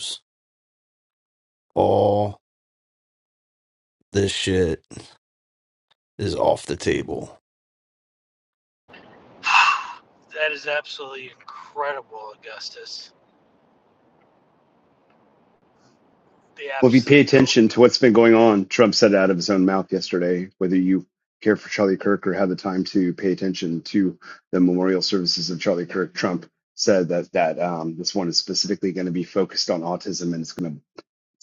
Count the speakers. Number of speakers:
three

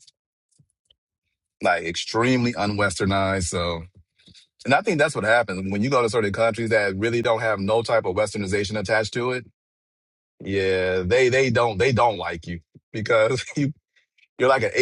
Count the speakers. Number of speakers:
one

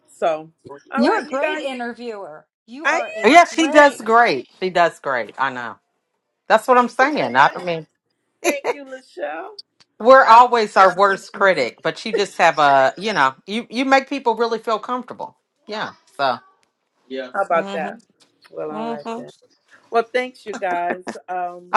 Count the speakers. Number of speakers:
three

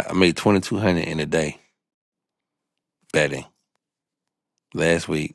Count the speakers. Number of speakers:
one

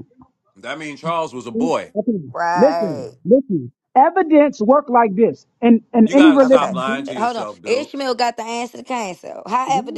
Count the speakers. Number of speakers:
three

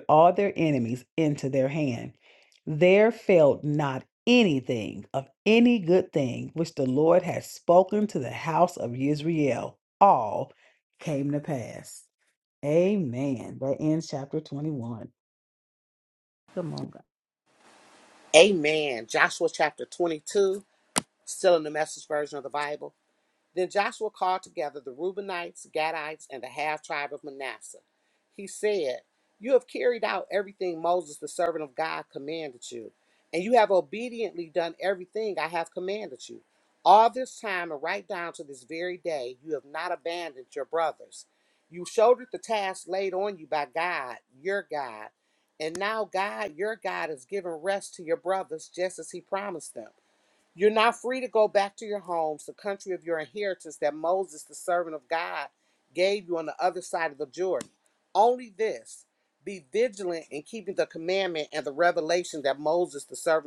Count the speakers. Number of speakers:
two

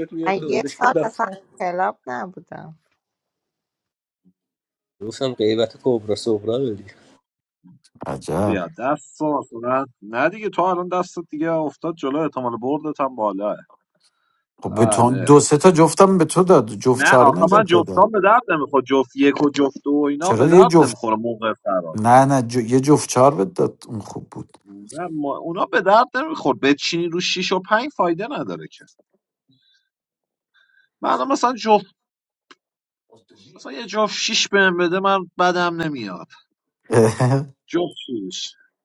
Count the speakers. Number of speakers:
four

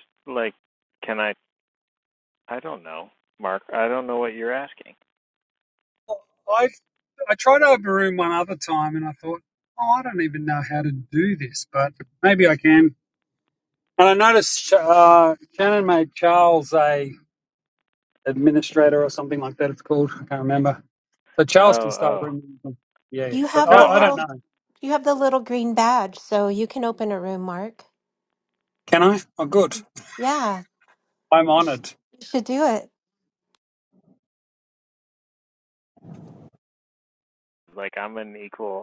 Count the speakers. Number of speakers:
three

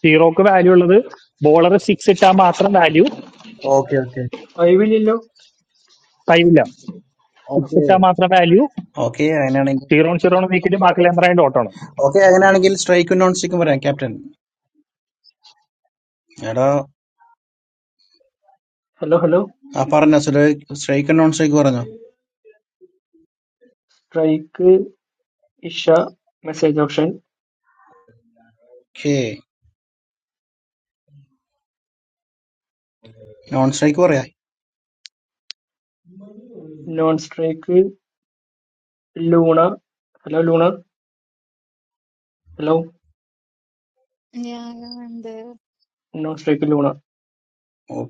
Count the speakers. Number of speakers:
four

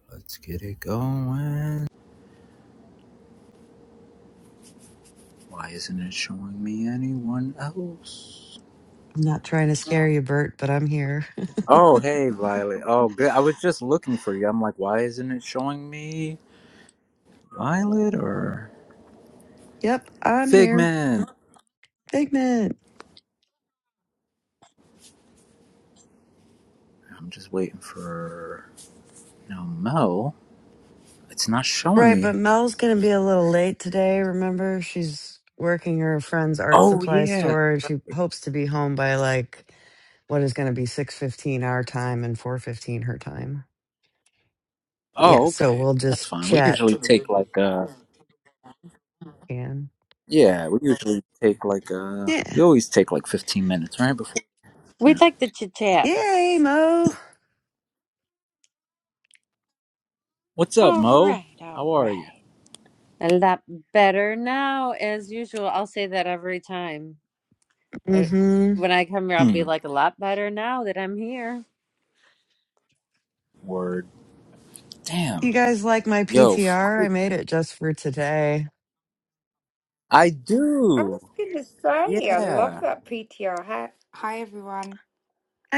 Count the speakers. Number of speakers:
four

